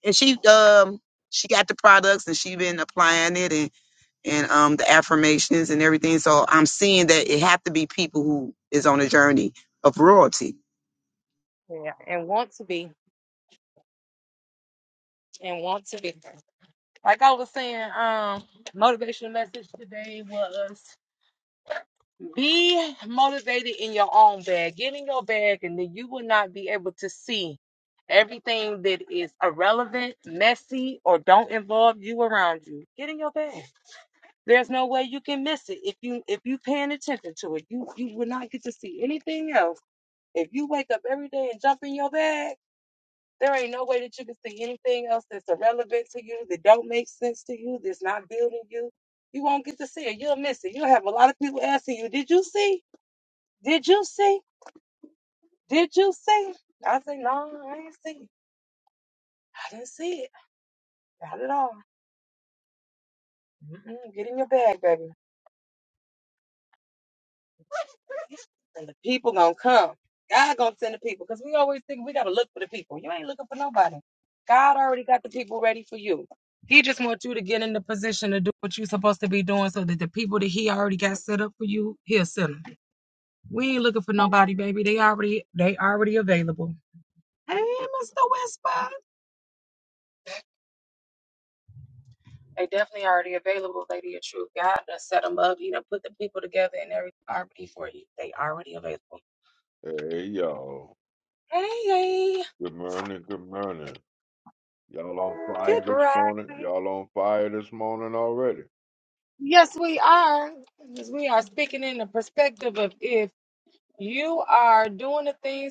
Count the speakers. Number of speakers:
three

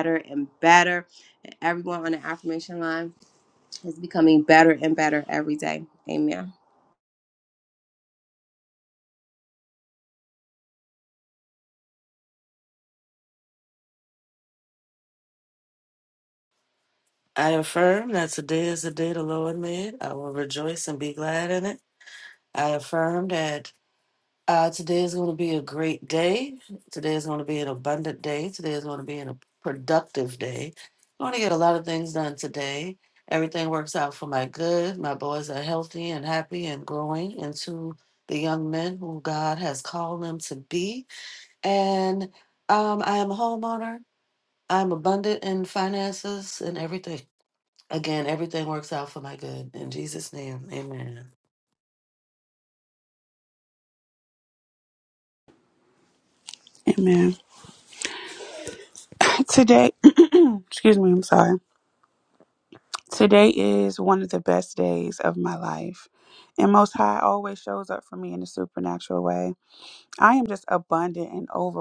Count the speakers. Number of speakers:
three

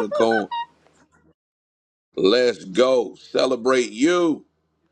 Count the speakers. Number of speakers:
one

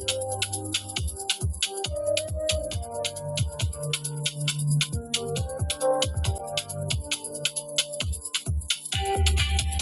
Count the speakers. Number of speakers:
zero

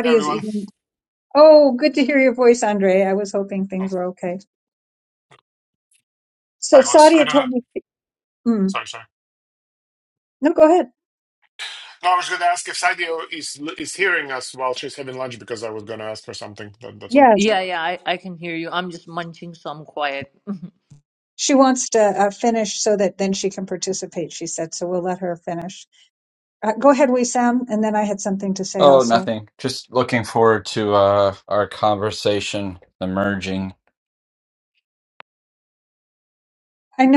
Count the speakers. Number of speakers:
four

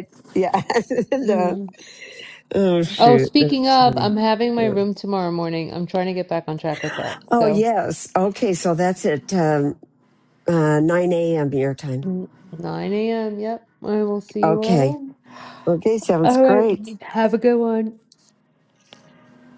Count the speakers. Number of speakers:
two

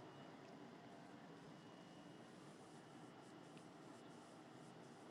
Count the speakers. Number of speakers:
zero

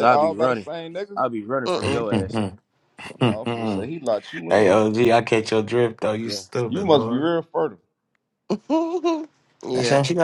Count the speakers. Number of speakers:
four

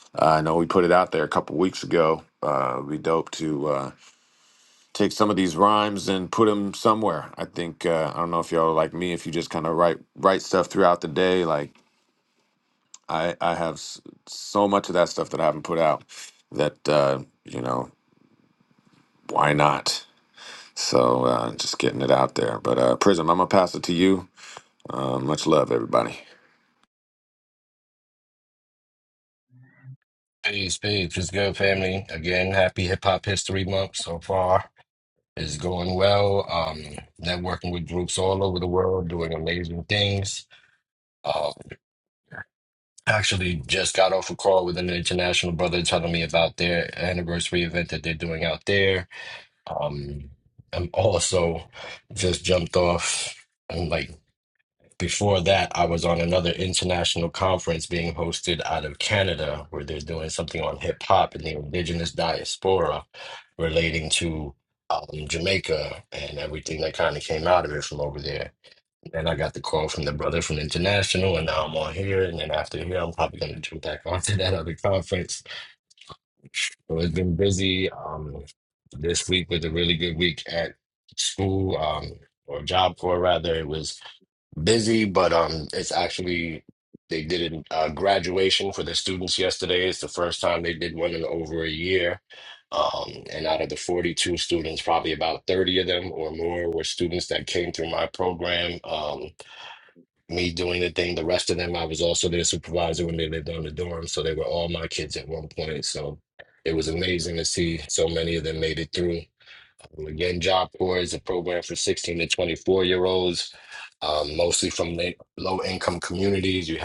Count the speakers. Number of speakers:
two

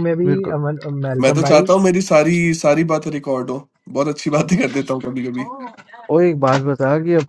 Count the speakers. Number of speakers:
three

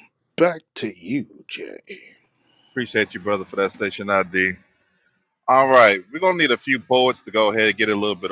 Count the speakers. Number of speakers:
two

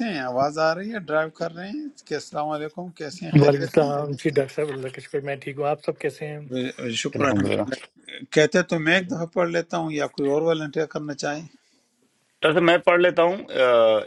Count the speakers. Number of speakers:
three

